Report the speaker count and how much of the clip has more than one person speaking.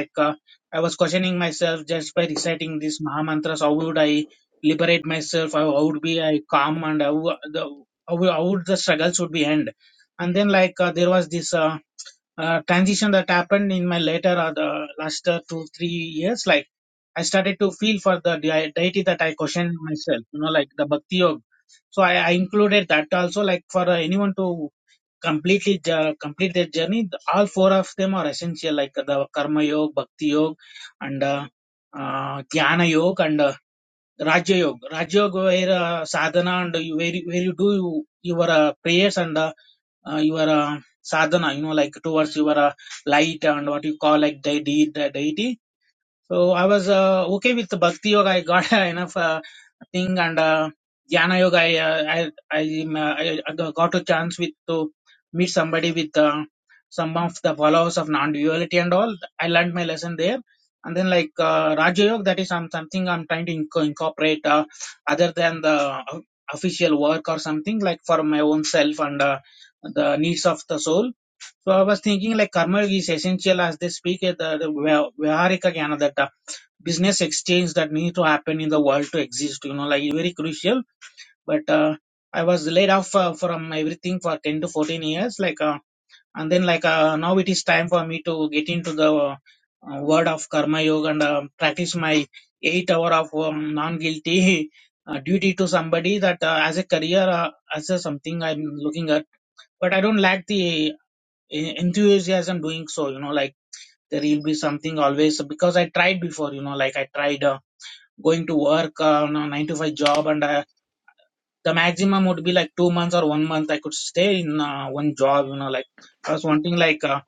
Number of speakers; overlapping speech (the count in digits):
1, no overlap